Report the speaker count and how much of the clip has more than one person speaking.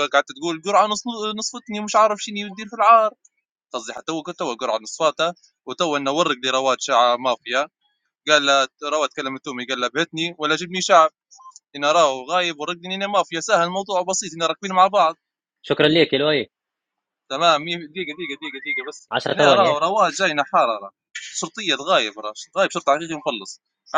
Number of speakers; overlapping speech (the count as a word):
two, about 2%